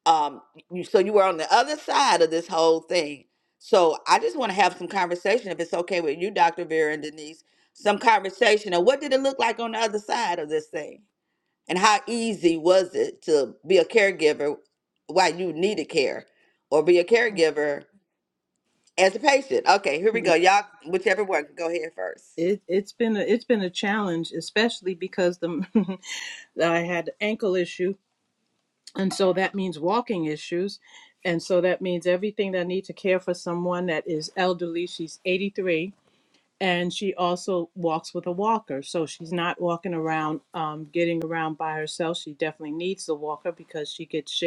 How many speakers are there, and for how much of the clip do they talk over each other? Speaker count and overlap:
2, no overlap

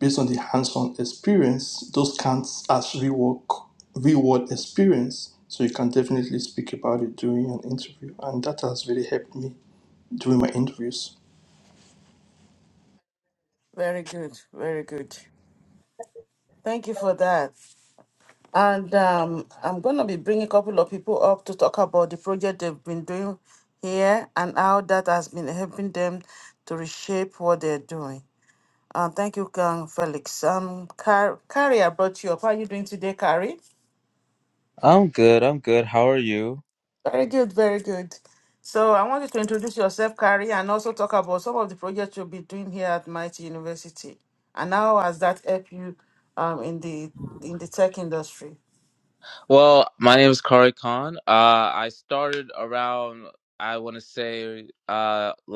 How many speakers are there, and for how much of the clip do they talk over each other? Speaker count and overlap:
3, no overlap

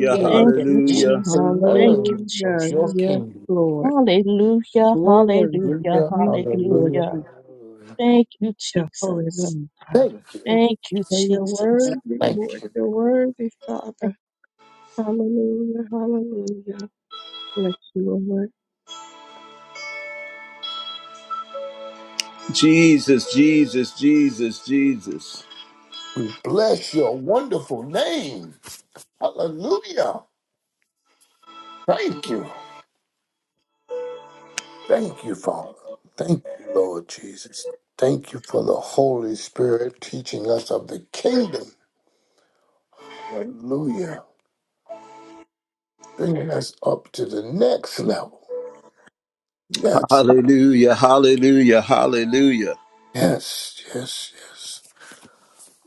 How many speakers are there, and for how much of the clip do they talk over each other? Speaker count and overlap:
4, about 13%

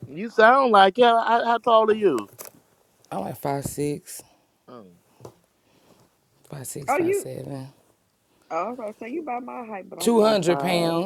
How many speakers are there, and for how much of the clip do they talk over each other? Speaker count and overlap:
3, about 13%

